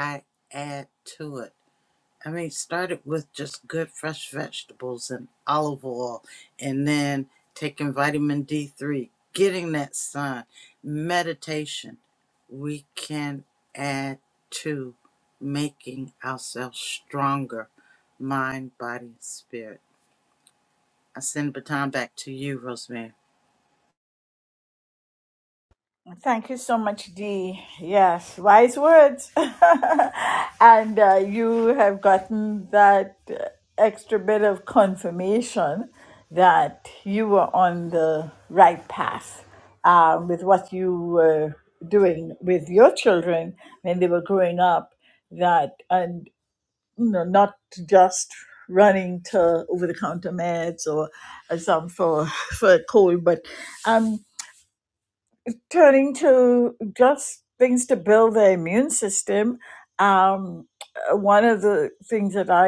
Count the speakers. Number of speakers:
2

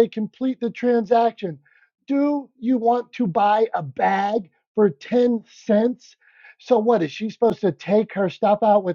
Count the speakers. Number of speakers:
1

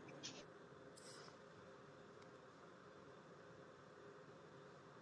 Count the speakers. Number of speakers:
0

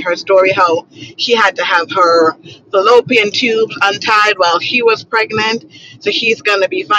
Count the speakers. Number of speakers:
1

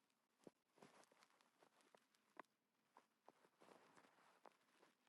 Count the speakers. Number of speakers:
0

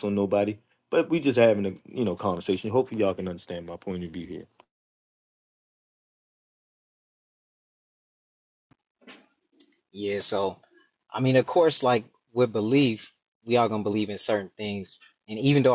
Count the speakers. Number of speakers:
2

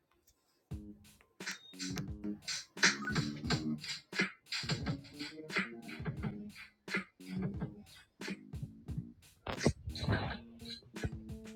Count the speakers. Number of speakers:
0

